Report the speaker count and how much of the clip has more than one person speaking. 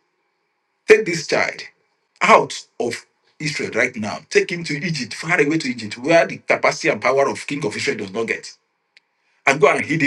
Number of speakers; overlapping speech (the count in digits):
1, no overlap